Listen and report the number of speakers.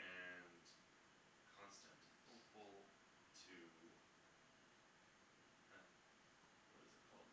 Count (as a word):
one